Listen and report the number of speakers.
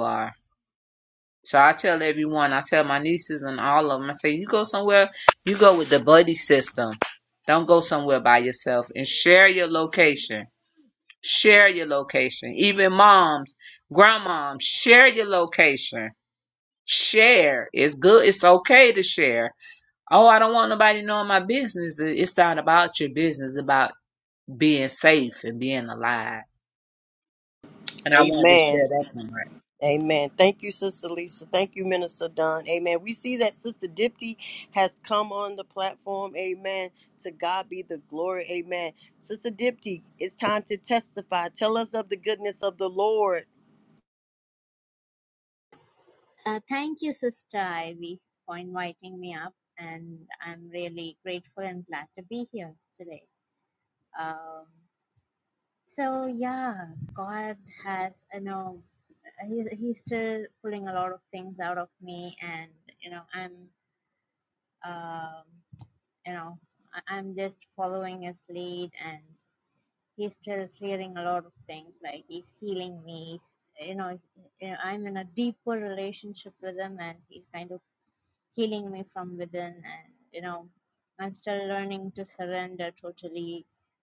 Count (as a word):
three